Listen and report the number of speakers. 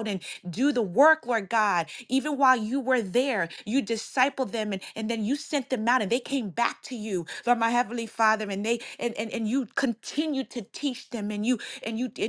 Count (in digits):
1